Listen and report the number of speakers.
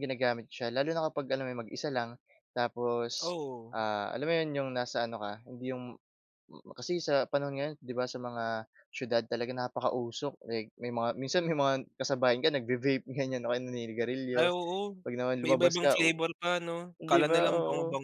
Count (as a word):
two